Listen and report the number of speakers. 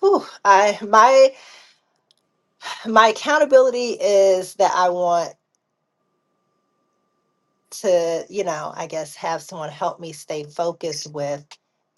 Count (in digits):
1